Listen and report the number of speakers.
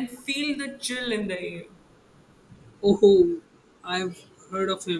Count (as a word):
two